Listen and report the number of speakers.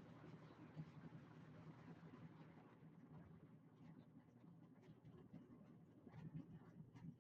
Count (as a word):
zero